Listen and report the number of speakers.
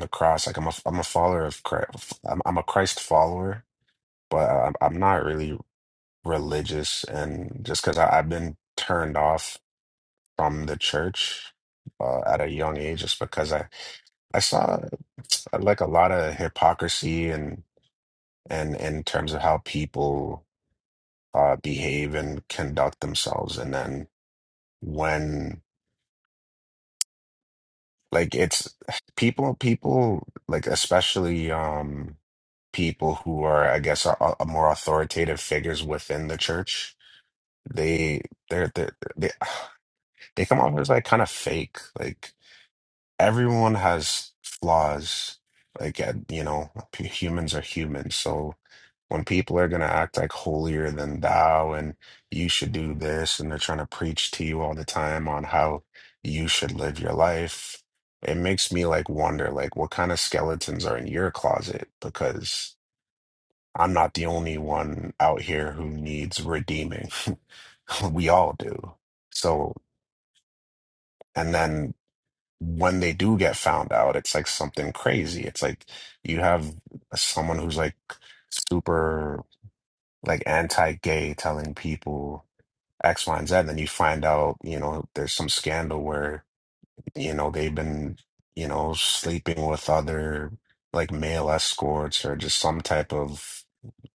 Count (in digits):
1